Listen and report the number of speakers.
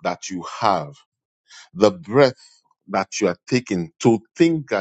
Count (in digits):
1